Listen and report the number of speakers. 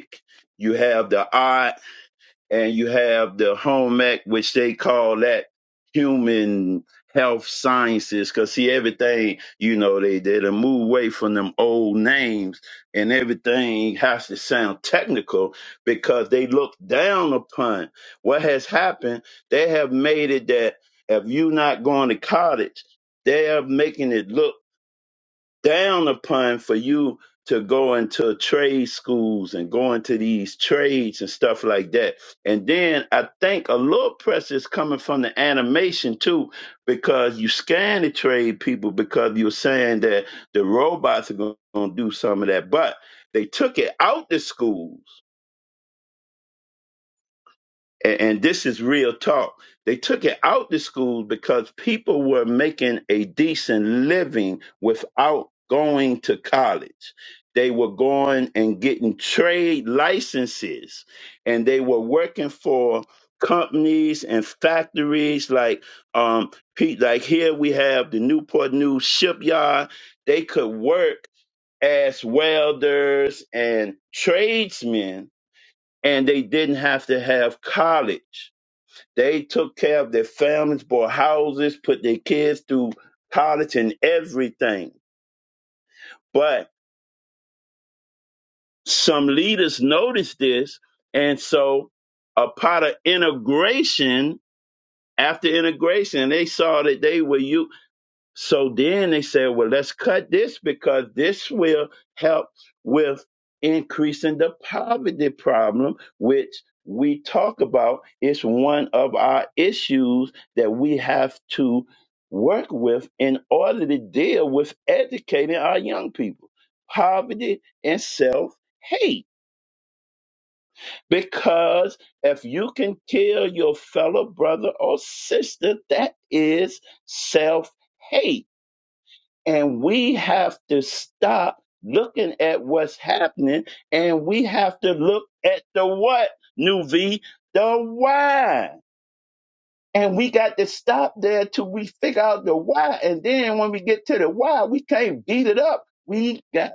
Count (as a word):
one